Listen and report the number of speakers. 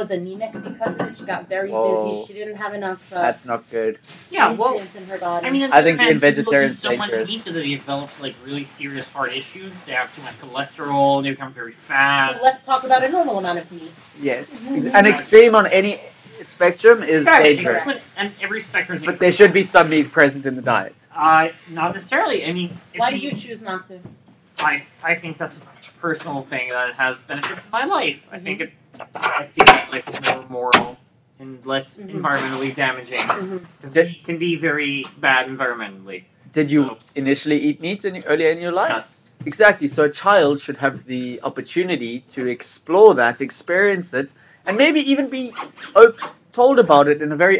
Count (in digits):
3